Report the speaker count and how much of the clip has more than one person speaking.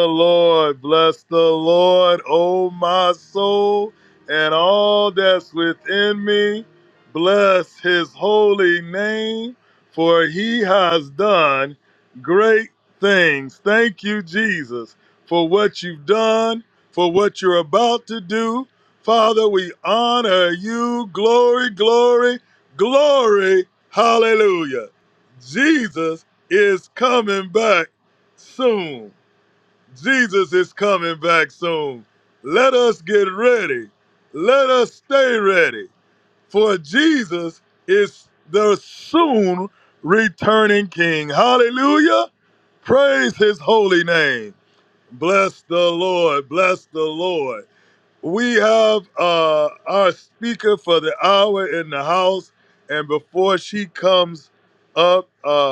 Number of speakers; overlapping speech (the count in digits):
1, no overlap